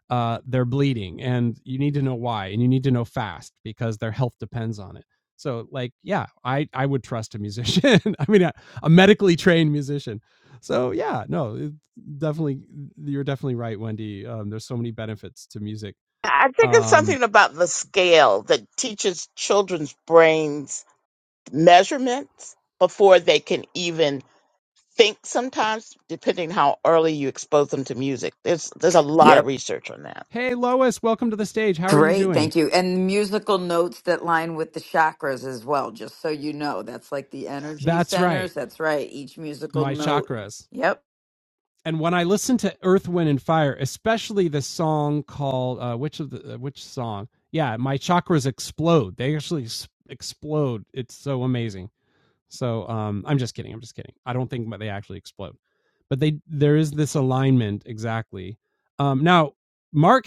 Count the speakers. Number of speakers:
3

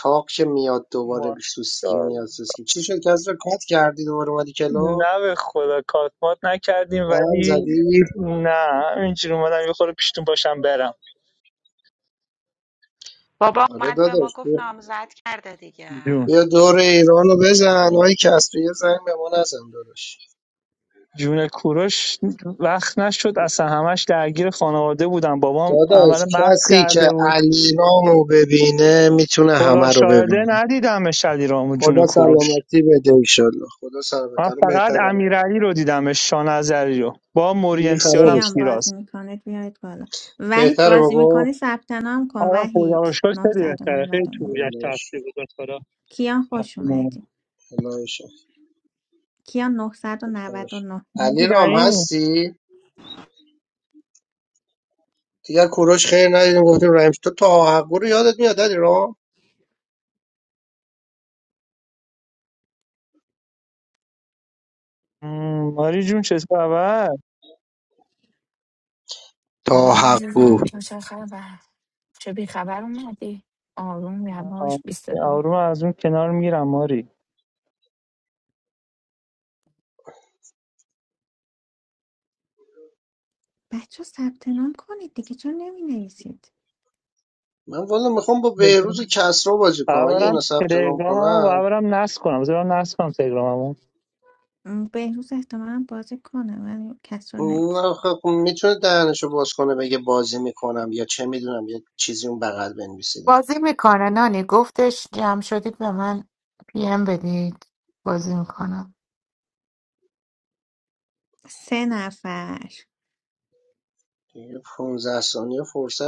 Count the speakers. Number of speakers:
6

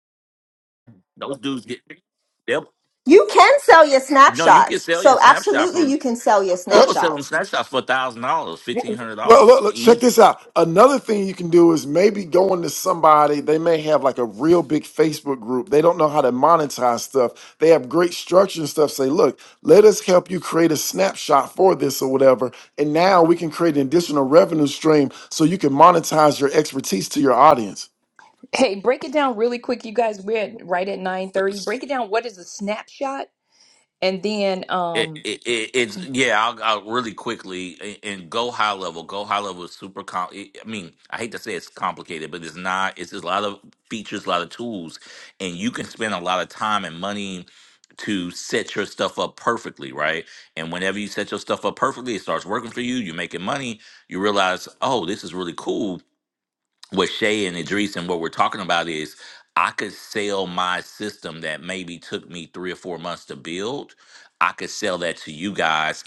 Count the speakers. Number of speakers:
4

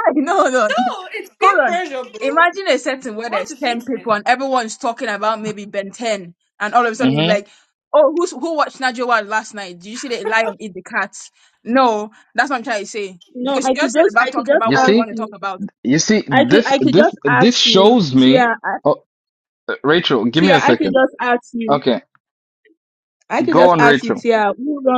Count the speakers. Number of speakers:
4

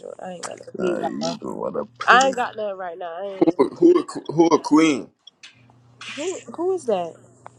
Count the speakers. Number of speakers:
3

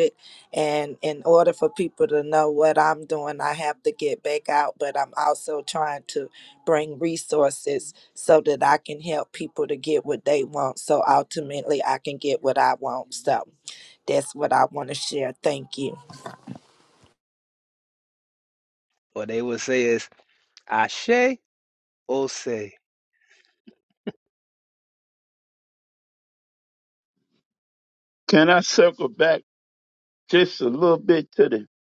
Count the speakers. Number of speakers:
3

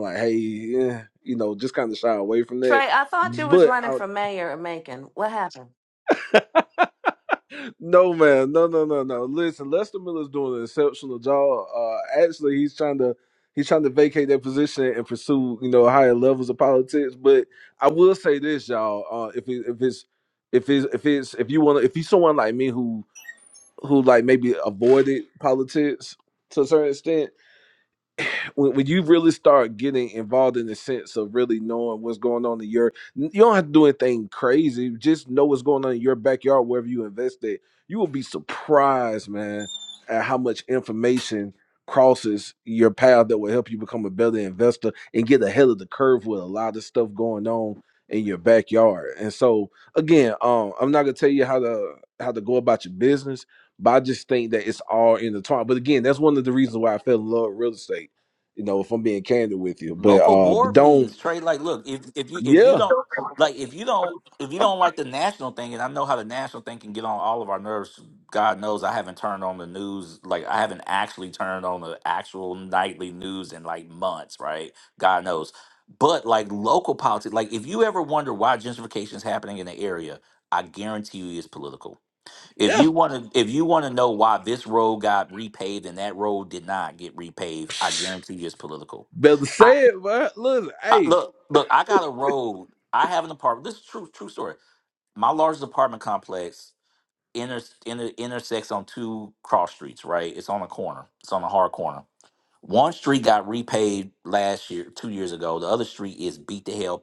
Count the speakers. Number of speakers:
3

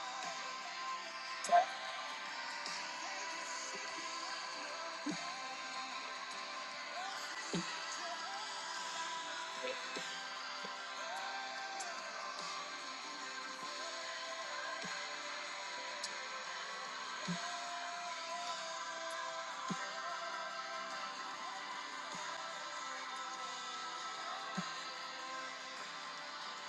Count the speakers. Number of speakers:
0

